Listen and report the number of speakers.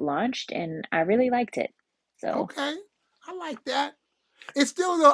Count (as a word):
two